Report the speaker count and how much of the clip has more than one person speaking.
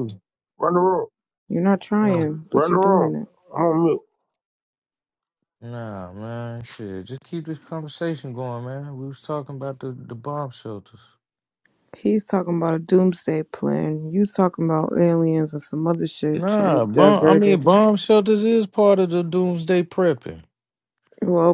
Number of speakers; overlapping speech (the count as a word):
three, about 10%